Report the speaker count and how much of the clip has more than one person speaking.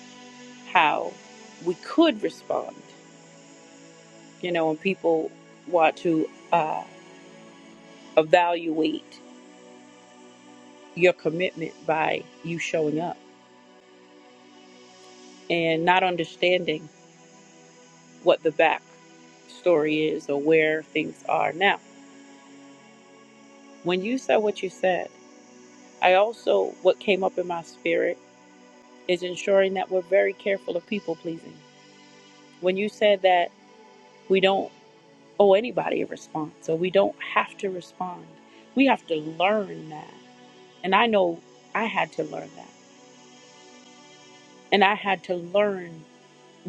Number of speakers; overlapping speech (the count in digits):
1, no overlap